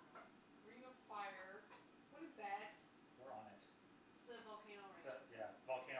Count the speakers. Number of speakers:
3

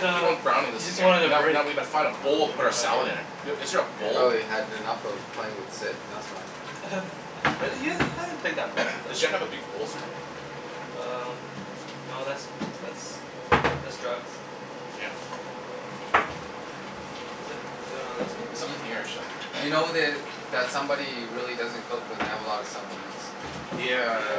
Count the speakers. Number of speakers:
3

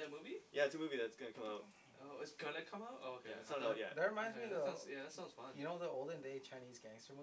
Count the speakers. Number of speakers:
3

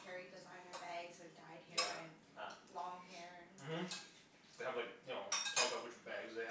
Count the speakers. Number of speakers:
2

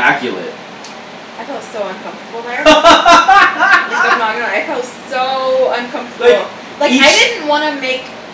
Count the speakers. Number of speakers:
2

